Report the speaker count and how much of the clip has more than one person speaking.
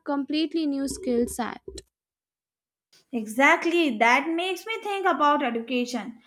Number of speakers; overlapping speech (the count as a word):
two, no overlap